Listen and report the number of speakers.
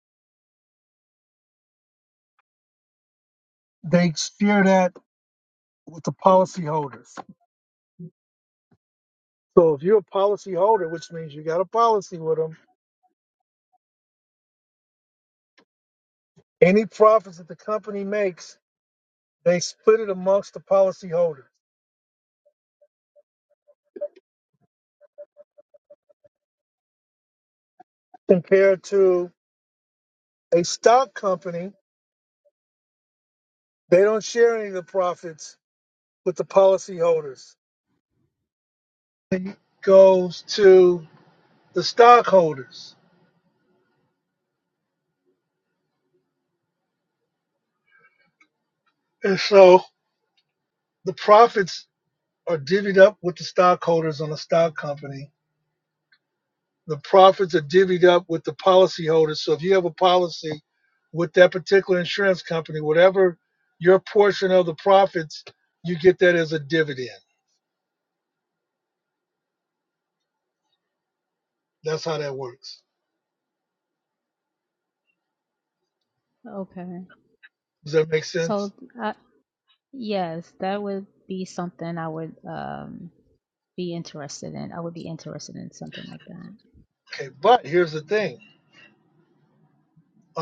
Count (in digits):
2